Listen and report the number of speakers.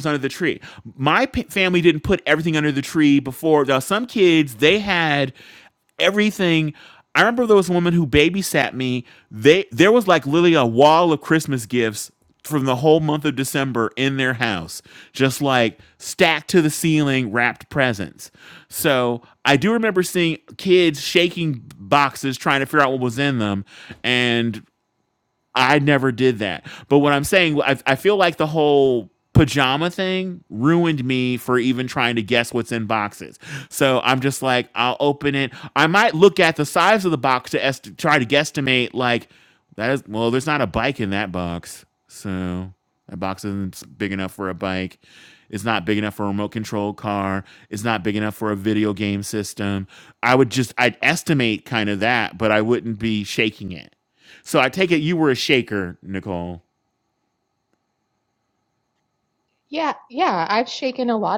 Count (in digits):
2